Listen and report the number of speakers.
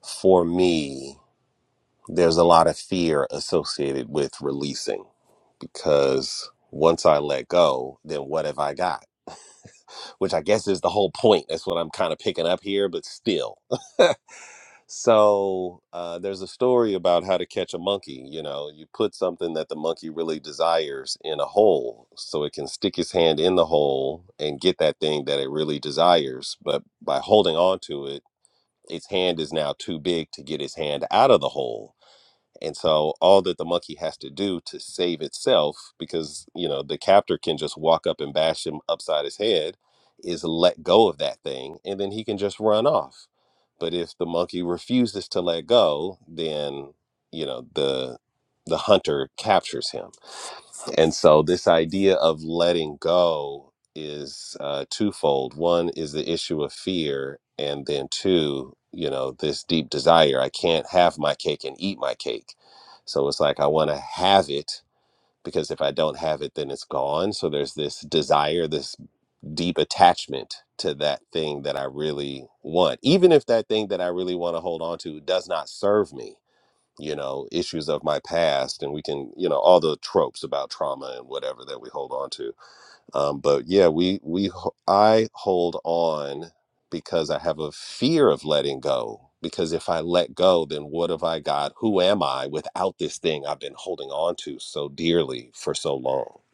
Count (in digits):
1